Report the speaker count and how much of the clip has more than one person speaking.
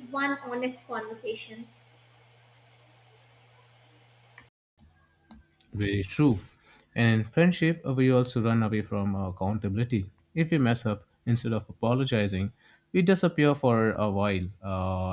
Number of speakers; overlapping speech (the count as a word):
two, no overlap